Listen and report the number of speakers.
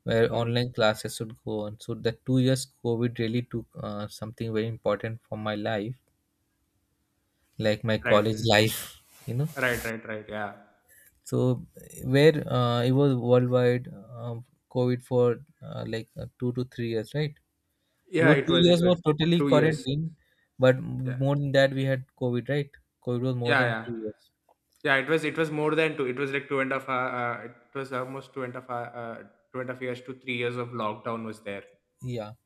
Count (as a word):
two